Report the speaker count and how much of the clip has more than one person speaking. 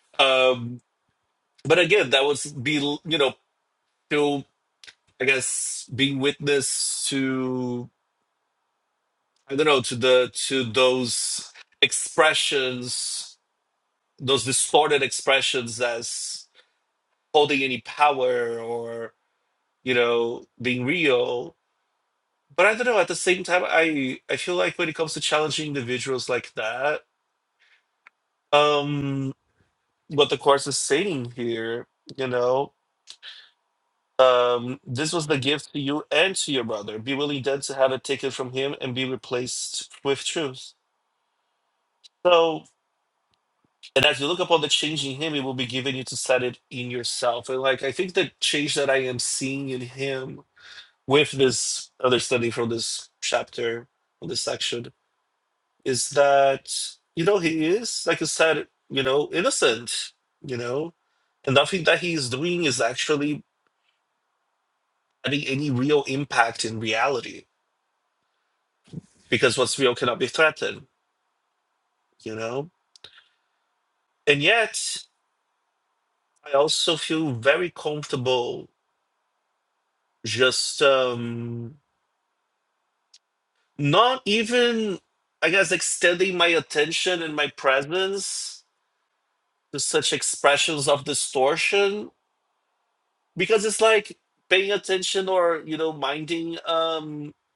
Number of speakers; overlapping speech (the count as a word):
one, no overlap